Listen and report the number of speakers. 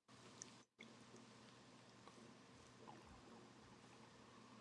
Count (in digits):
0